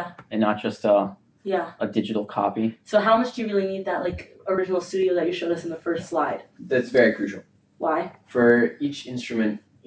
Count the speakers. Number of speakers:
3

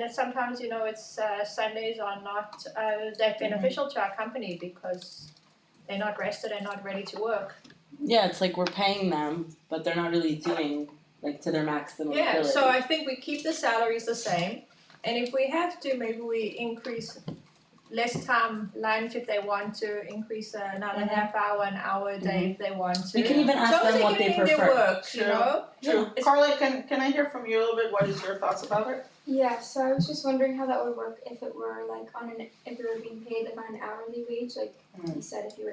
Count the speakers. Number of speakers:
4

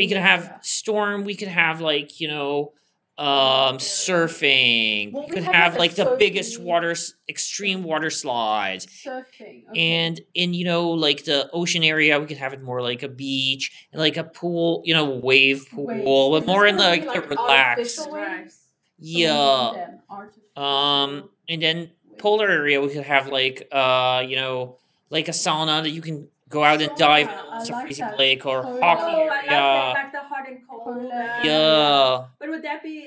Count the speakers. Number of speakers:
3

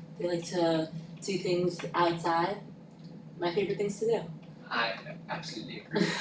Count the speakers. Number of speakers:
2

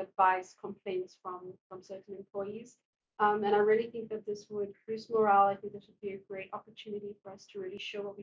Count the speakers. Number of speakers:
1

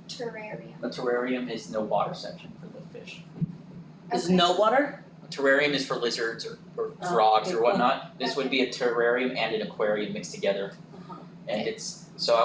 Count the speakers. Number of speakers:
3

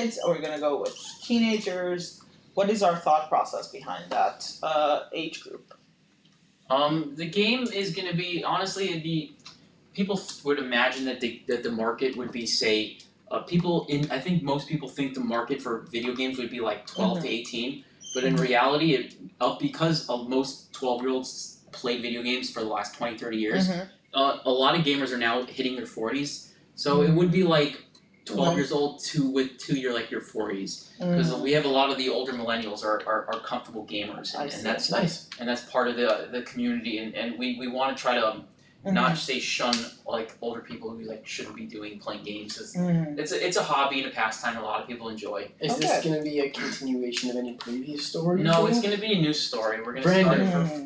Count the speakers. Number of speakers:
3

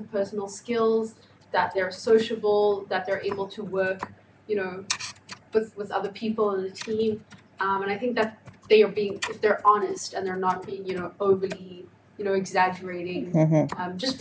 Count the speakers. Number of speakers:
1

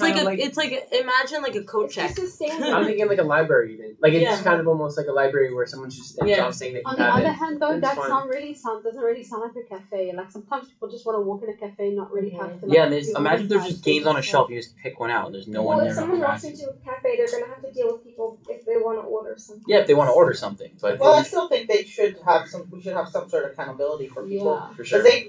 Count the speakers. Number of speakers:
6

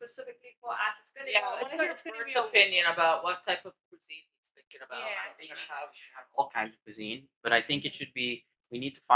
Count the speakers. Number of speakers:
3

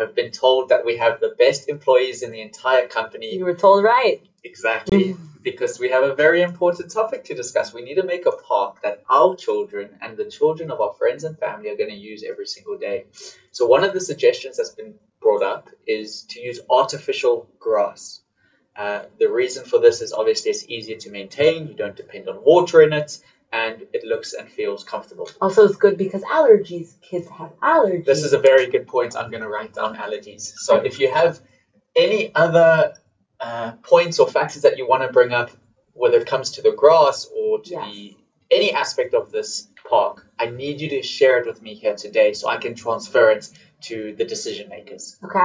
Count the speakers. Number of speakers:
2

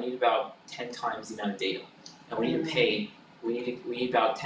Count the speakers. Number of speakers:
1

